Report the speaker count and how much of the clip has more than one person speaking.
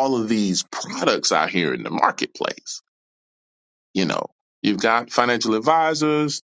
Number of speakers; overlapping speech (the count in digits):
1, no overlap